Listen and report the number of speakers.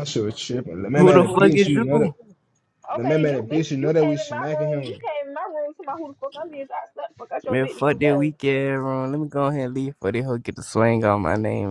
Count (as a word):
three